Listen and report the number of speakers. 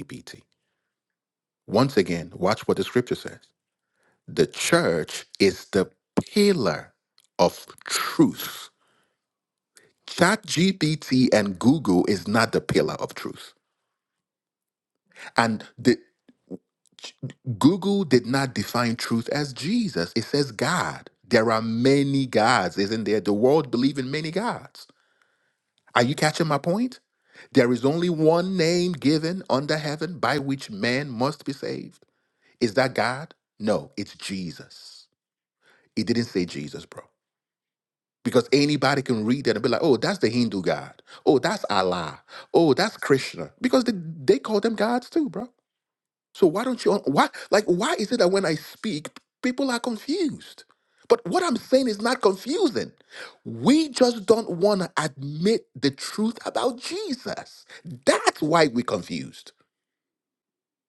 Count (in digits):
1